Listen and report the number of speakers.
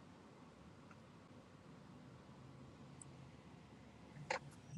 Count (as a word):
zero